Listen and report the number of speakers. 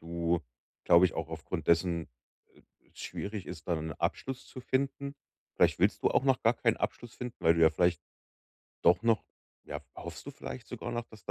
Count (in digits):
1